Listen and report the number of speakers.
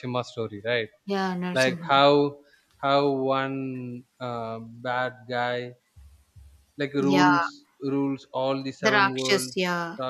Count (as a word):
two